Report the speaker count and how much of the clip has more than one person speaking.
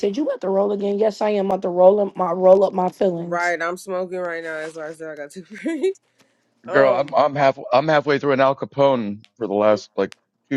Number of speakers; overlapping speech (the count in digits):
3, about 7%